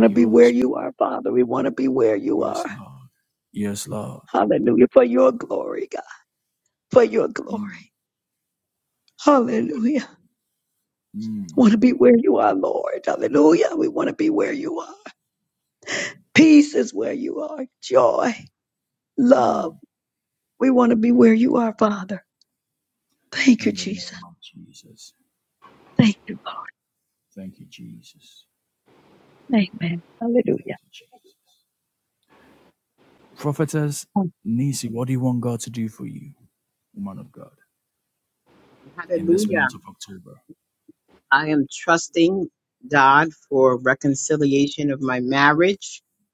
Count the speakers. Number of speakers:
three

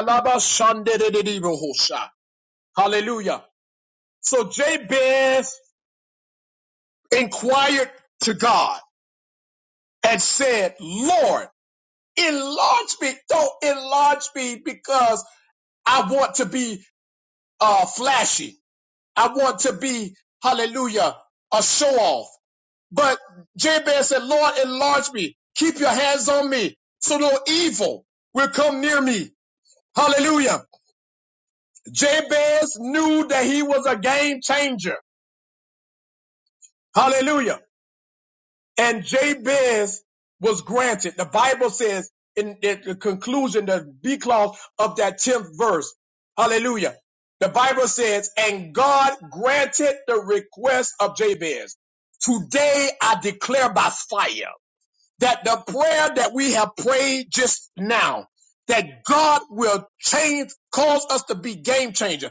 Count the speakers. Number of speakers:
one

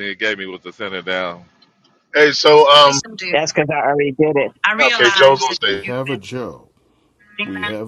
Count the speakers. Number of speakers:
four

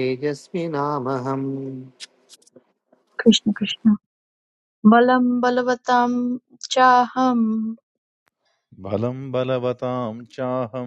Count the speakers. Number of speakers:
three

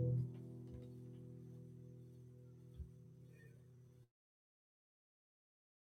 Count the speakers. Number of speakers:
zero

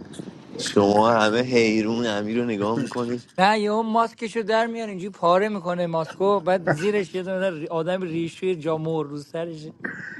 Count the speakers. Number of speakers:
two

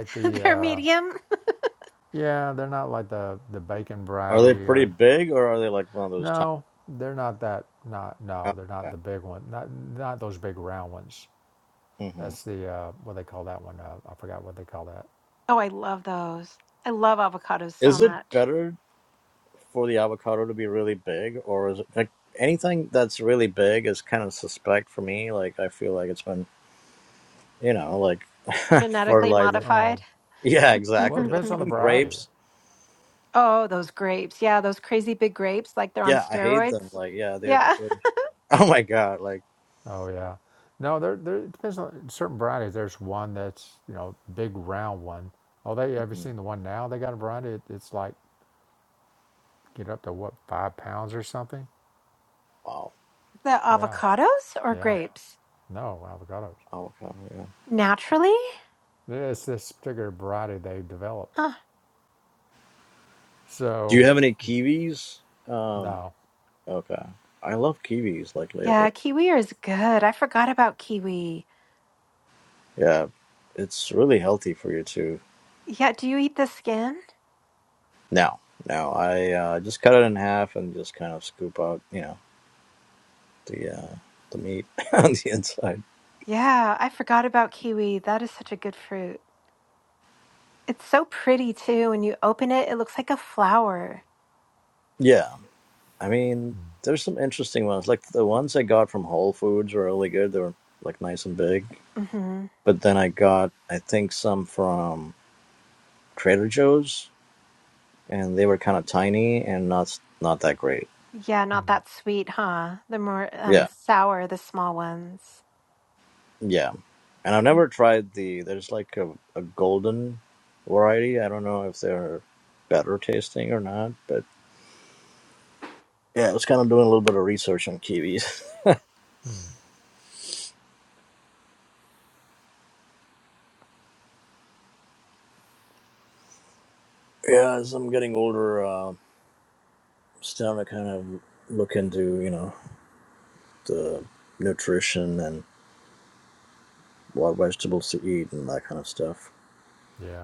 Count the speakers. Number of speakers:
three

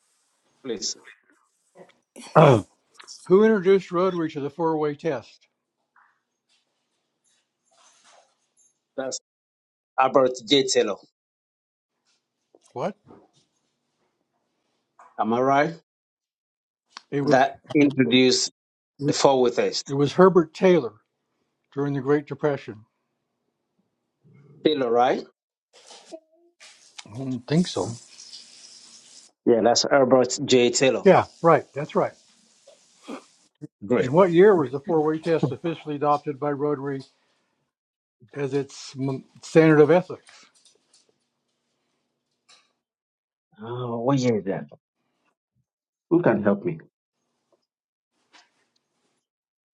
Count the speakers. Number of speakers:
two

